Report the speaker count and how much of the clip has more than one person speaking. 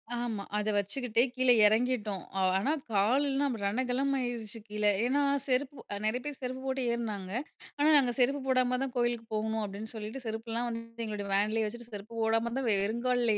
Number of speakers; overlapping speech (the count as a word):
one, no overlap